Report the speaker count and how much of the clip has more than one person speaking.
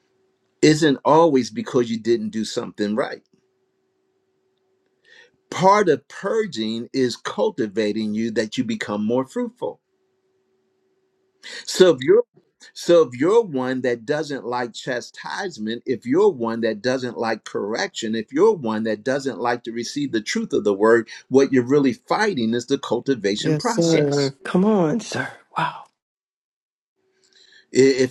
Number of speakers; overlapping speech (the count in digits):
2, about 3%